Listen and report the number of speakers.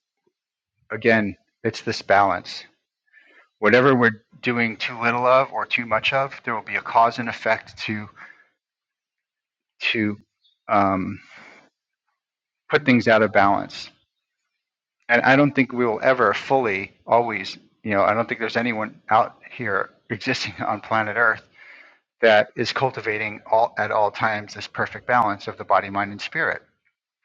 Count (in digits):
1